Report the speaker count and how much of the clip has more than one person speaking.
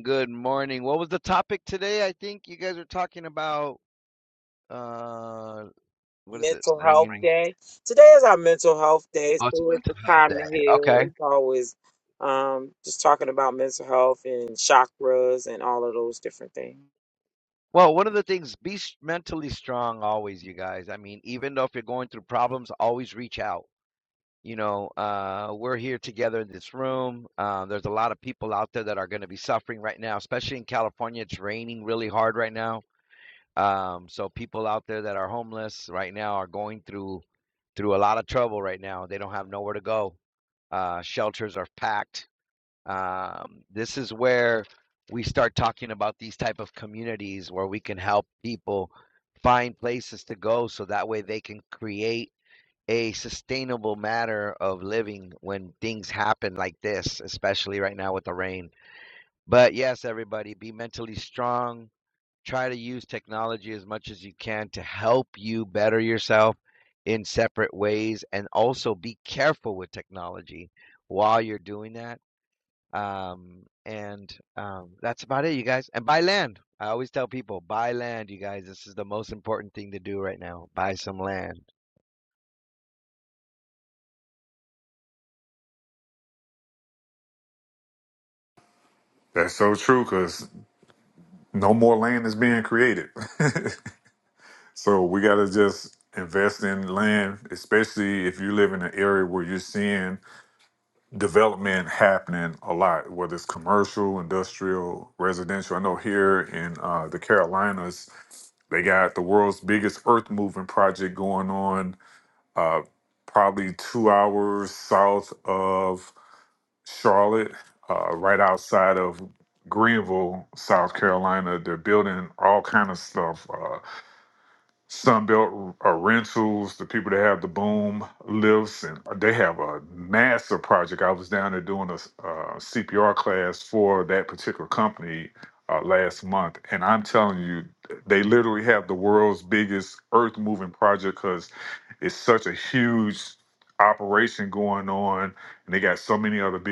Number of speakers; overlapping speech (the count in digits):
3, about 2%